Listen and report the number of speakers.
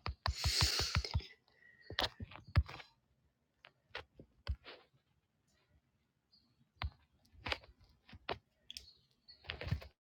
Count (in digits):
0